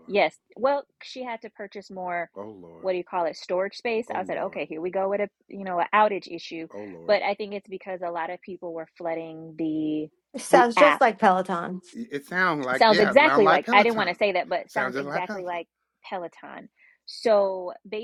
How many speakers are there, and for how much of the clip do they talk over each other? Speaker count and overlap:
3, about 17%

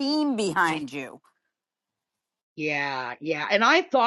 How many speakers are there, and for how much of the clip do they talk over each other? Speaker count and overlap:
2, no overlap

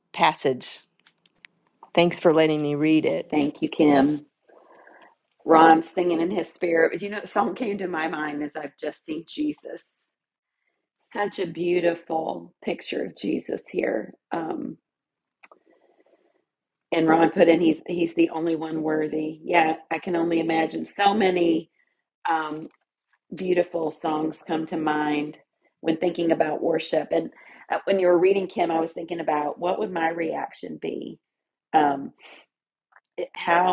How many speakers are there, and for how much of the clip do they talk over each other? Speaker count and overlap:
2, no overlap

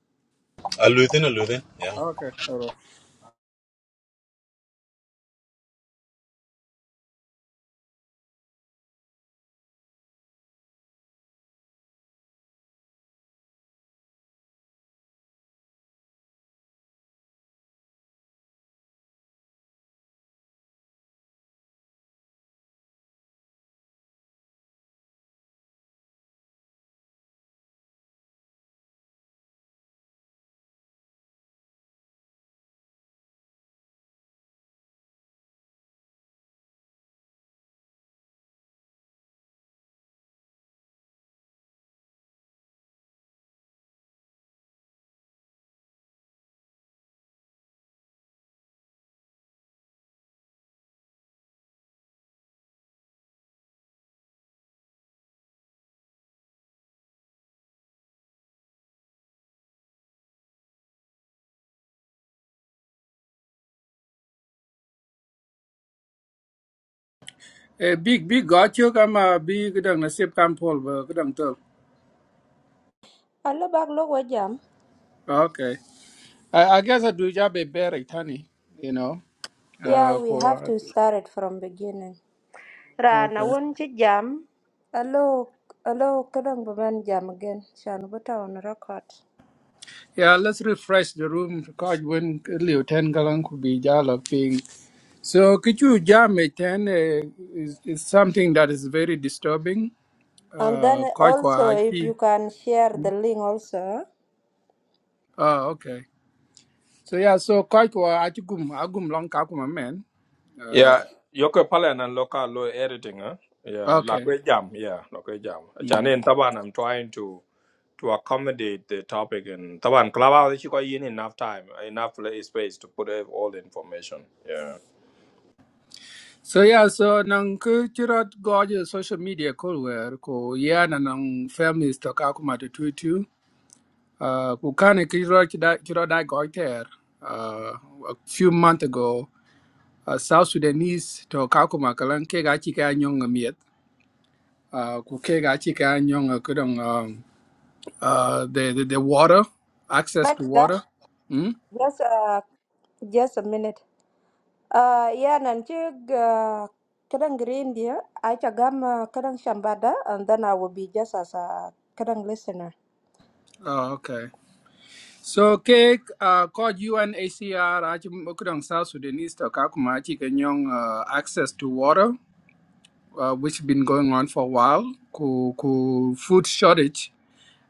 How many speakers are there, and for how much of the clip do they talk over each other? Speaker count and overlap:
4, about 2%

